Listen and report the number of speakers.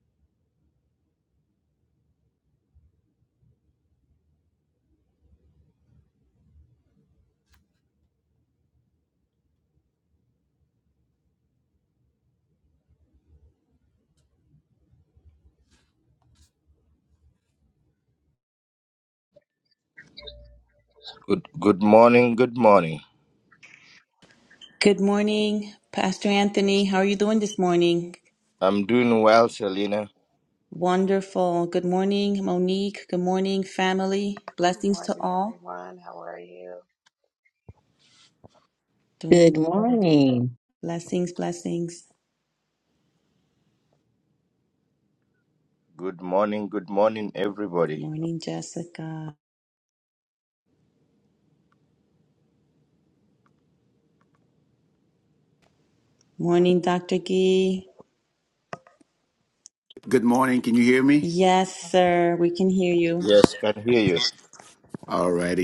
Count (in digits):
5